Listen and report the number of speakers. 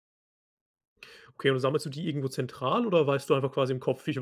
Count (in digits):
1